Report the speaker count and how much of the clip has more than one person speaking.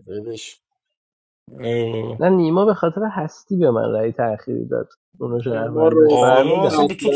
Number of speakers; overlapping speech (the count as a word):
three, about 23%